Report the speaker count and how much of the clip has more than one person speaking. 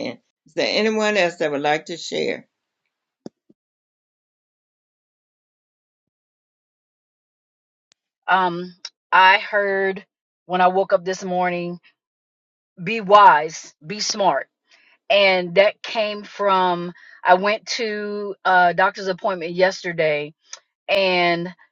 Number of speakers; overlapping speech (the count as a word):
two, no overlap